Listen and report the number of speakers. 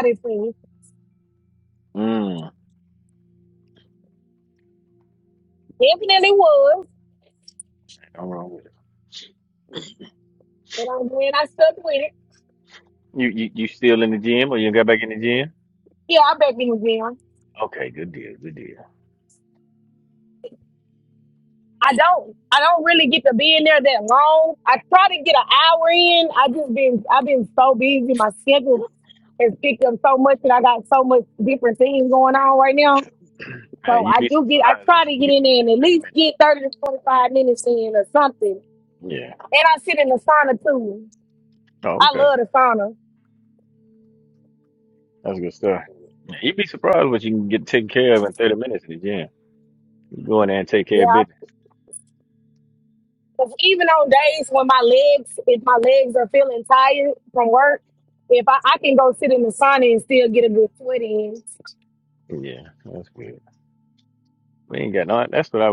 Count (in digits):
2